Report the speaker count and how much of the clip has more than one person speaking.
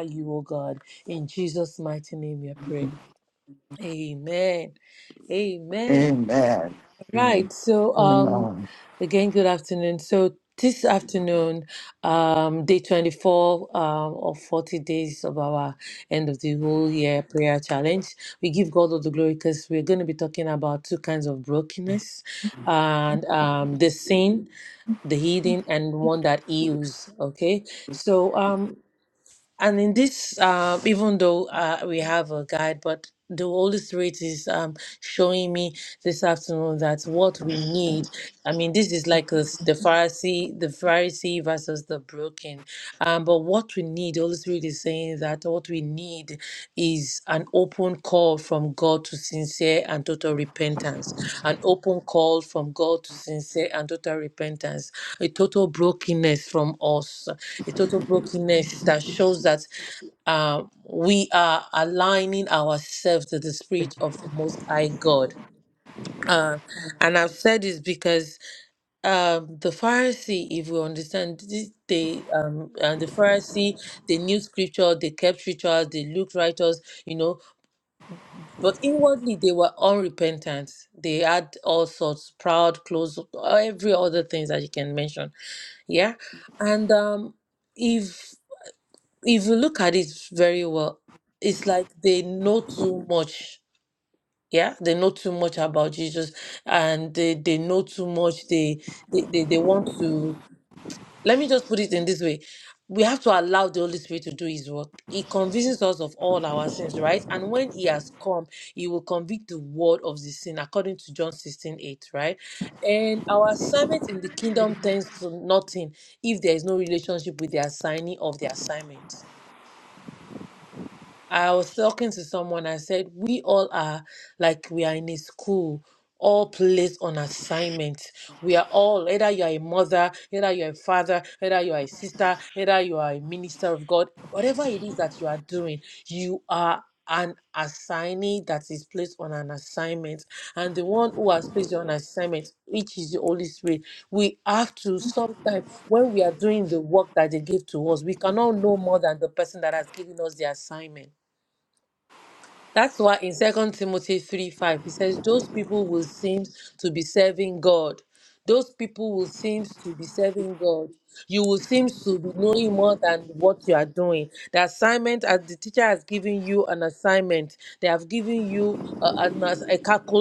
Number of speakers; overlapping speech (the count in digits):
2, under 1%